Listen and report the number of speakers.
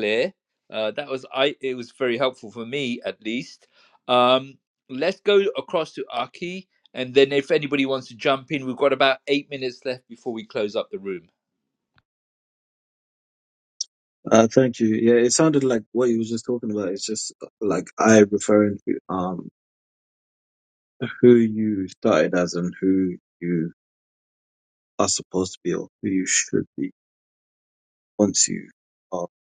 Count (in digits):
2